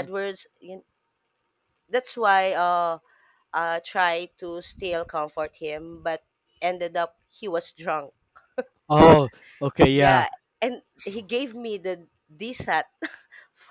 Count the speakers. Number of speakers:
2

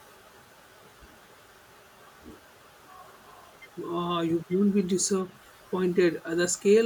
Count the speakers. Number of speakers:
1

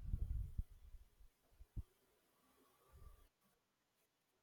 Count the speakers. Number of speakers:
0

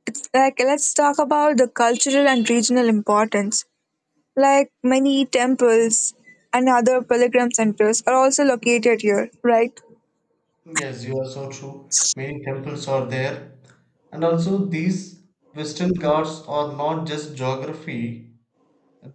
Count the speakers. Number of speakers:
2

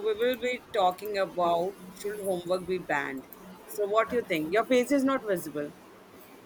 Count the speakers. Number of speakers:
1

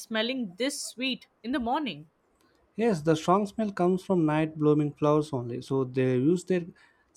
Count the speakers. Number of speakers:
2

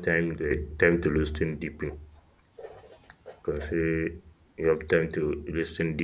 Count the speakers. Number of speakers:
1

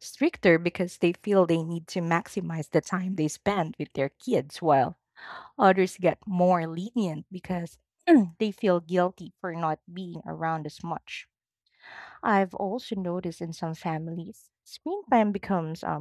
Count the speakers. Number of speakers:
1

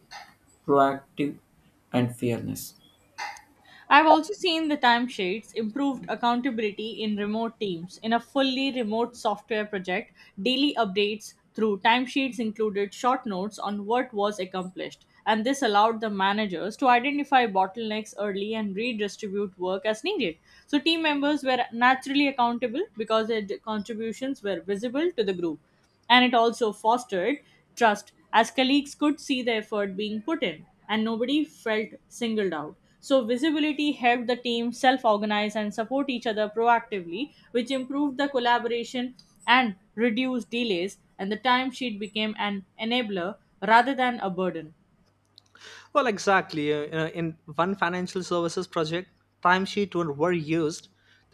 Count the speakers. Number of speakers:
3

